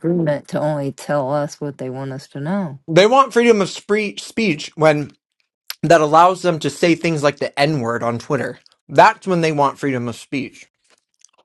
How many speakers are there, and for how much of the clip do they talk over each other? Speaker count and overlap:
2, no overlap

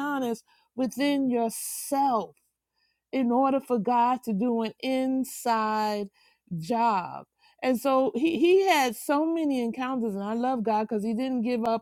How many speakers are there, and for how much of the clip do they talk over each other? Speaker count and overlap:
1, no overlap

